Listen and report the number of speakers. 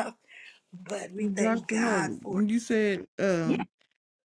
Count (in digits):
2